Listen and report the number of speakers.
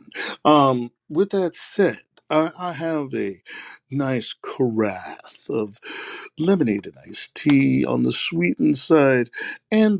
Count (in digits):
1